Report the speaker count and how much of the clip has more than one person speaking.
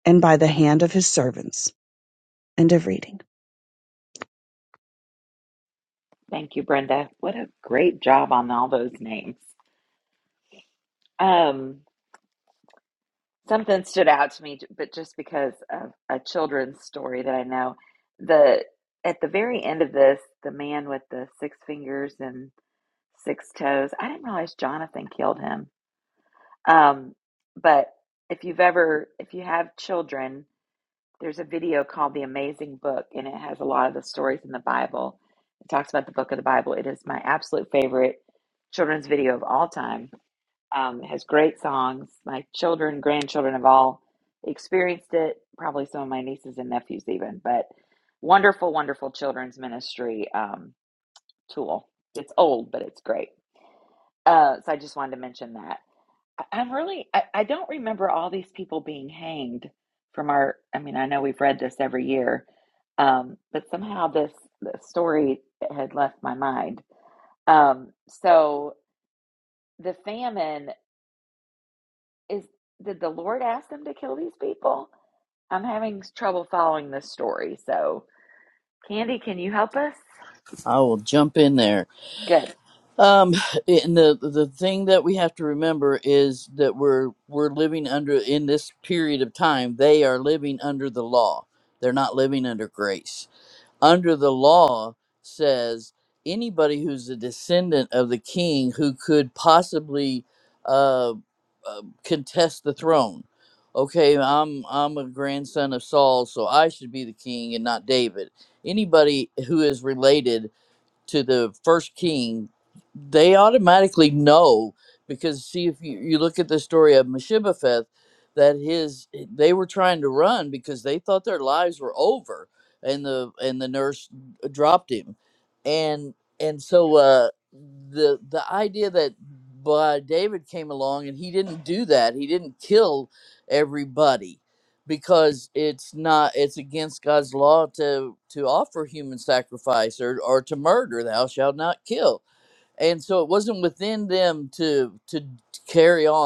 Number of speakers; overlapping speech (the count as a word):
three, no overlap